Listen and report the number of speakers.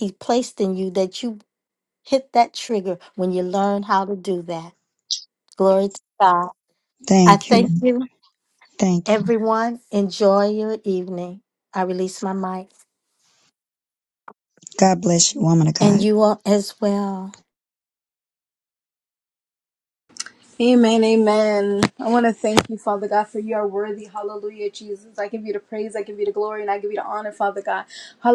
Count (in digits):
3